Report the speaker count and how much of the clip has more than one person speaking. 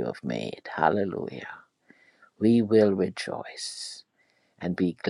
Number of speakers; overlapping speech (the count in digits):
1, no overlap